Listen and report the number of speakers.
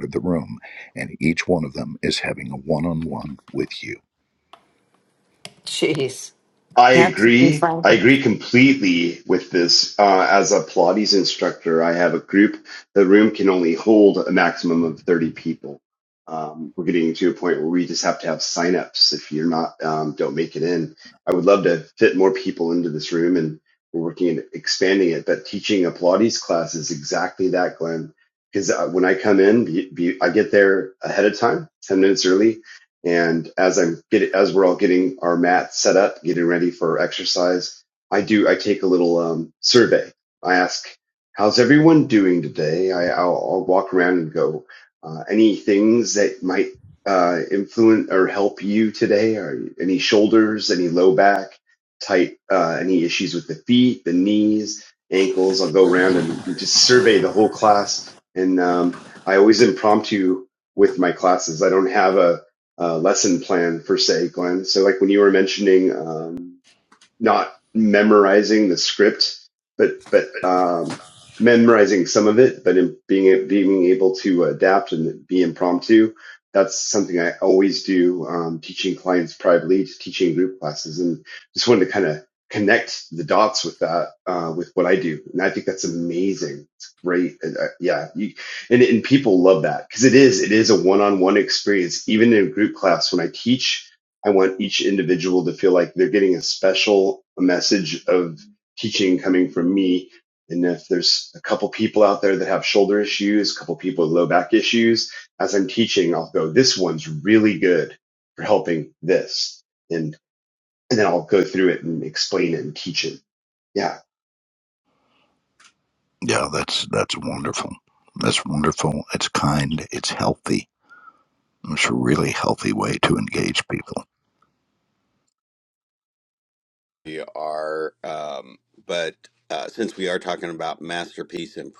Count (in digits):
4